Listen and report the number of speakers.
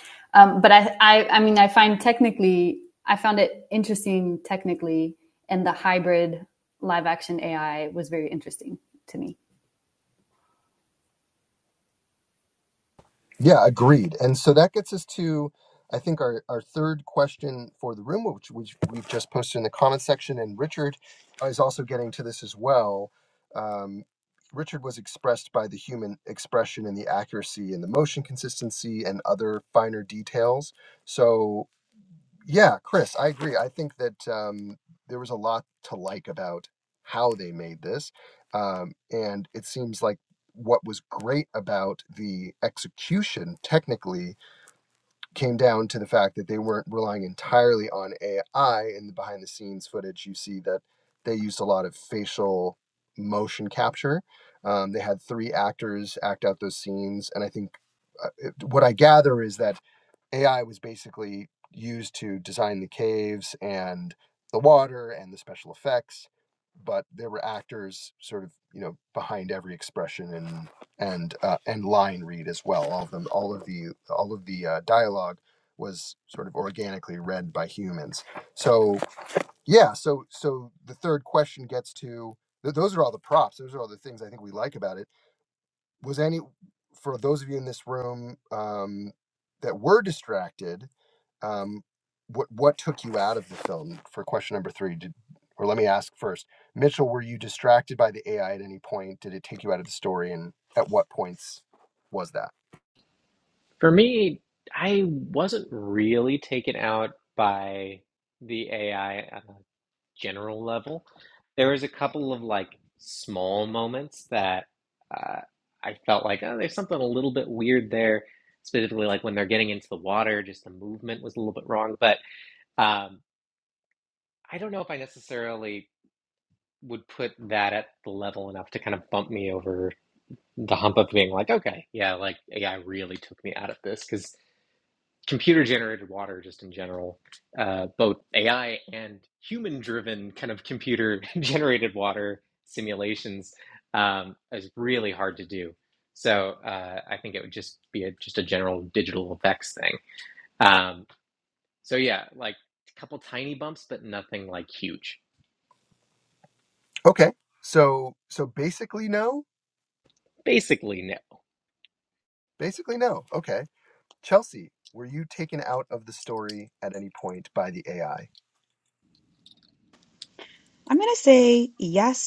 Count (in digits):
4